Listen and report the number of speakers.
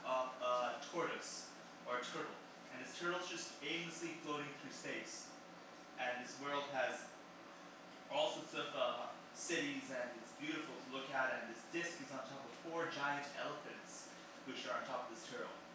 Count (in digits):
1